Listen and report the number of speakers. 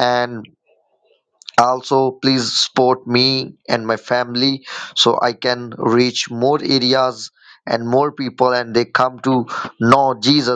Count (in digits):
1